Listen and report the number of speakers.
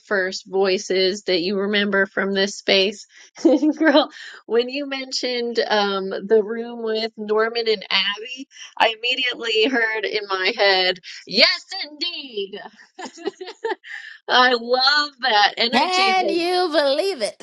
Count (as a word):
two